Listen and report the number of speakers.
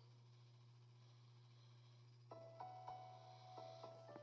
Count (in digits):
0